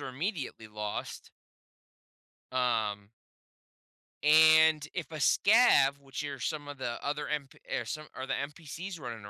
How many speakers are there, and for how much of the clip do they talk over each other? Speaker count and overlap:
1, no overlap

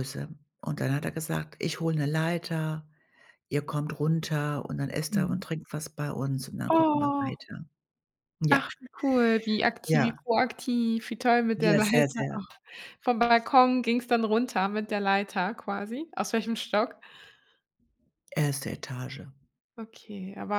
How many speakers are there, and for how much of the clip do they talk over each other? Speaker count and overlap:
2, about 11%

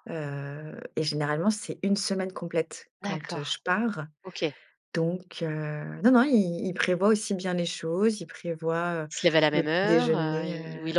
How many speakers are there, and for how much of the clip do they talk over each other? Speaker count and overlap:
2, about 18%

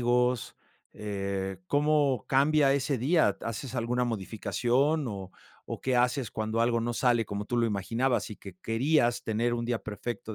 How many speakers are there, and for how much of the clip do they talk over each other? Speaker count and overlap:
1, no overlap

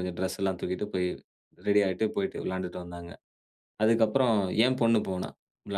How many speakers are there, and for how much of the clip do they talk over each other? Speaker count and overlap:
1, no overlap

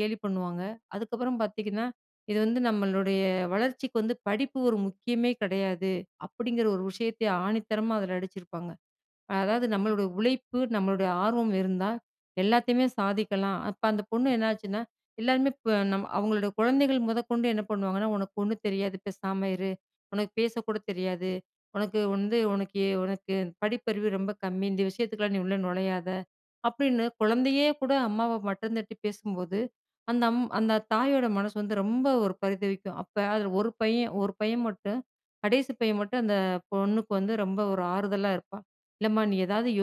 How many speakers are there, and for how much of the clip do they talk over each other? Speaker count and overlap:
1, no overlap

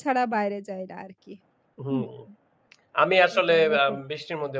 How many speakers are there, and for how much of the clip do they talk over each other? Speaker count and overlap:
2, about 9%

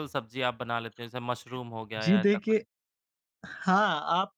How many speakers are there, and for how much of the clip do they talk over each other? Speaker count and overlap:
2, about 11%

